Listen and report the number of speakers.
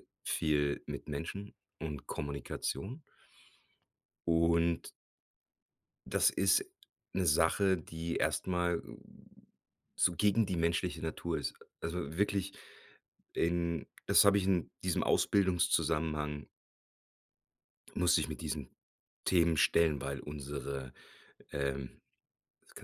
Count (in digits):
1